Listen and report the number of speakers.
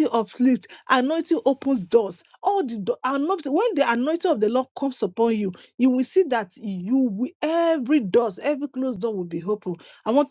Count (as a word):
one